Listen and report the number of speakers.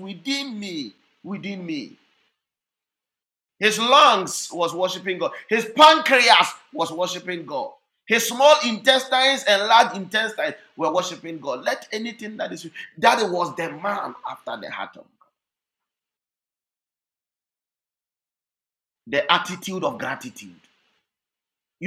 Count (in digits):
1